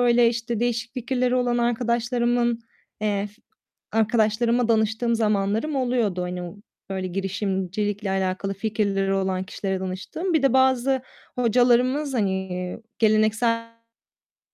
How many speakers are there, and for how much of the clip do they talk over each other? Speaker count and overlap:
1, no overlap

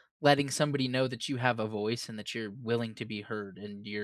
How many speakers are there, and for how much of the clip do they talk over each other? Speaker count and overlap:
1, no overlap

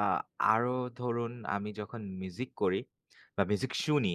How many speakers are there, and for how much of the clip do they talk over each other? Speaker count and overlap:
1, no overlap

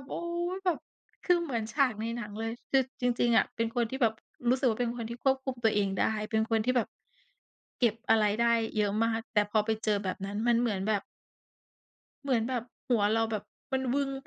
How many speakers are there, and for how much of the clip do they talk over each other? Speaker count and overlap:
1, no overlap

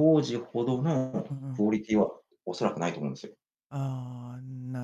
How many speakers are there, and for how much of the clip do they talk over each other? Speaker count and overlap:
2, about 10%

